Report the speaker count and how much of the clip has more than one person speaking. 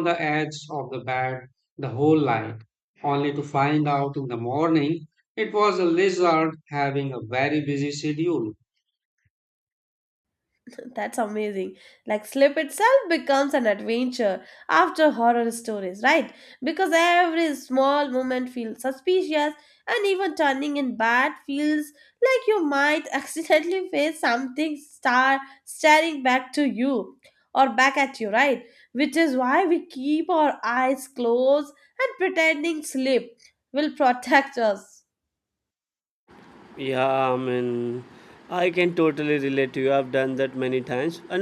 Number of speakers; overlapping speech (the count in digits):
3, no overlap